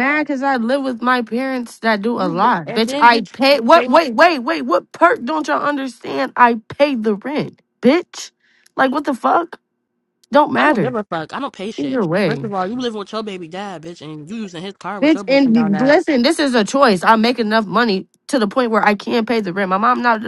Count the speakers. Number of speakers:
two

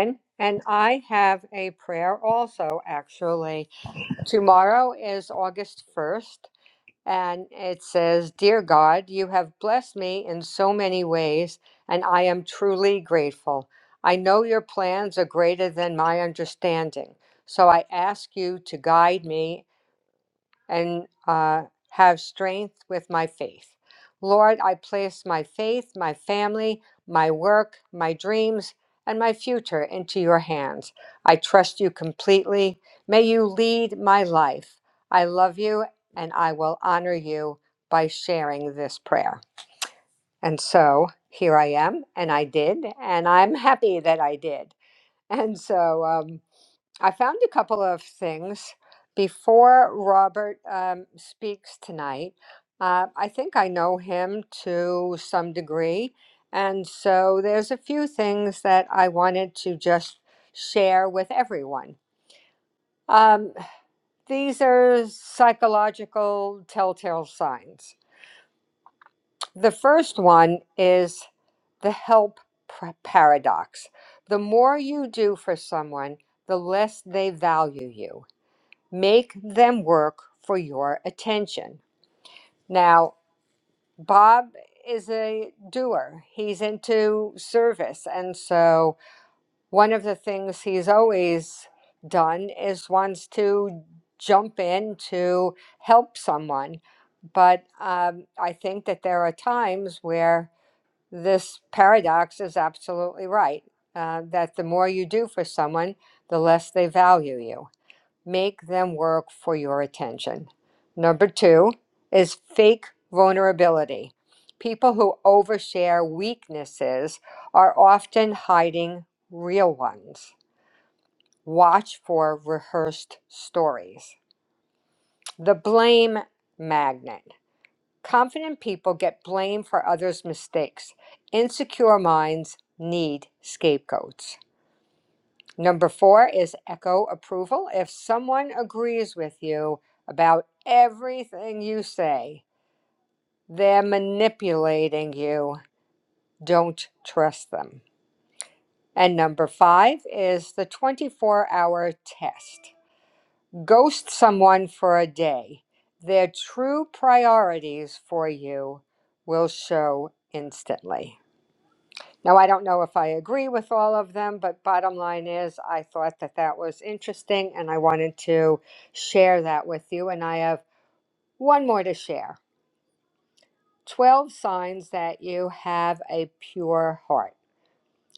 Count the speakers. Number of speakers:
one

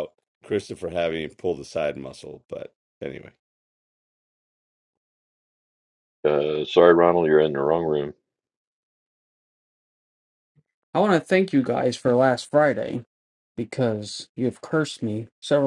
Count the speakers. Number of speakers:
three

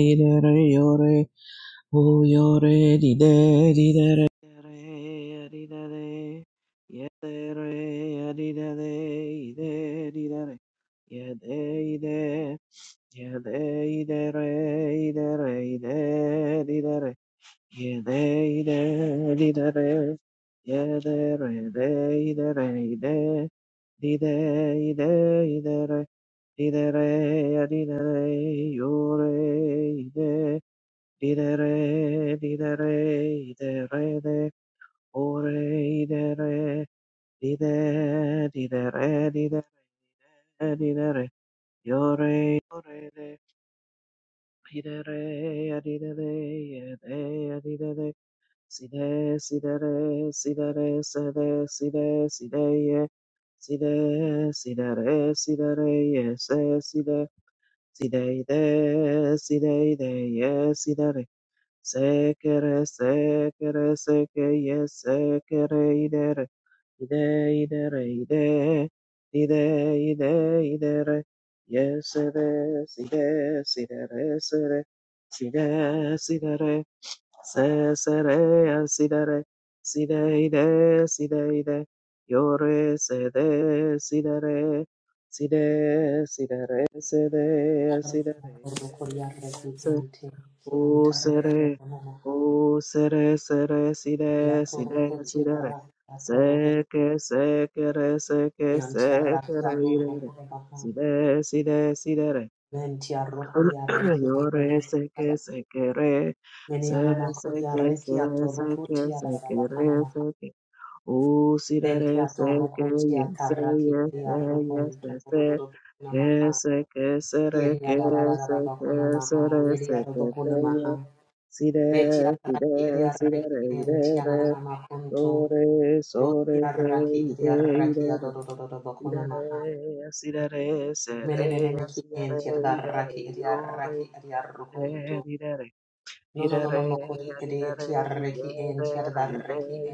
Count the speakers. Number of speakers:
two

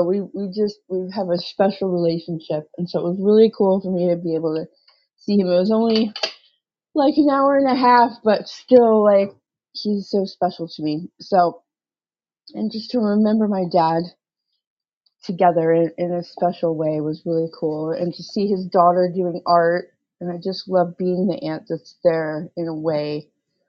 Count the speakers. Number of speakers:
one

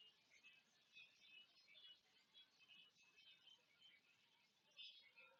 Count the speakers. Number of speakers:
zero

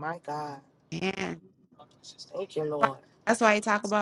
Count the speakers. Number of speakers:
two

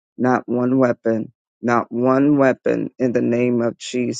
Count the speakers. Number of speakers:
one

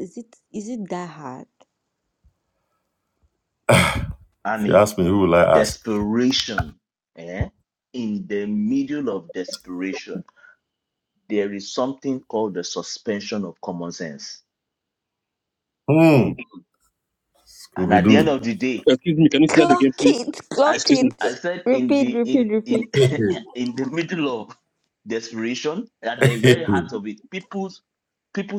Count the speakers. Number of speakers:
four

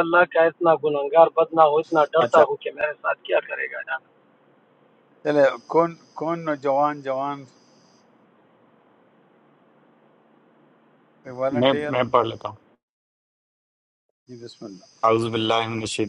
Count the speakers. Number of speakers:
three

